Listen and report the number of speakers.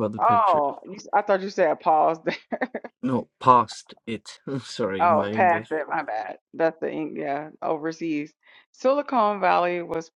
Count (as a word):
two